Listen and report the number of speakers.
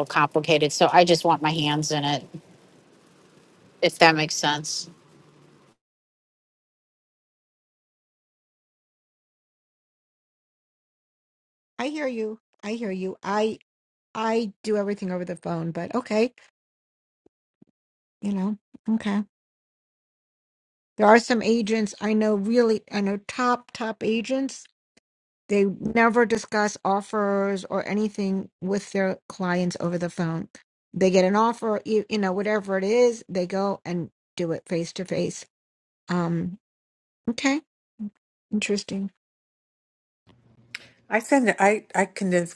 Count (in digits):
3